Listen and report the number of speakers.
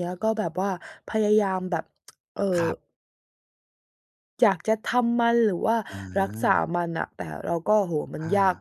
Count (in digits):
2